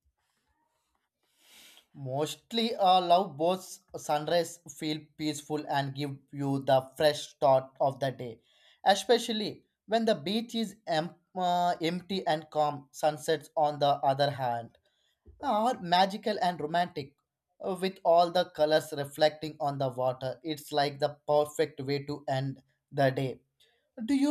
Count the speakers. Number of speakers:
one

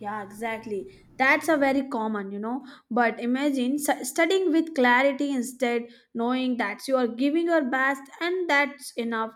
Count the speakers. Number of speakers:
one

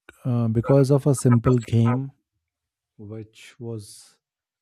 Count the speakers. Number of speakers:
one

